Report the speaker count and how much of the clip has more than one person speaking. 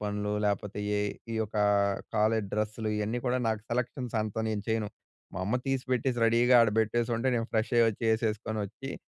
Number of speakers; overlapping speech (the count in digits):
1, no overlap